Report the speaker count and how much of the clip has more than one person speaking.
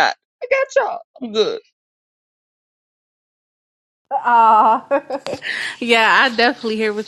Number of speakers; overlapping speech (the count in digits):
2, no overlap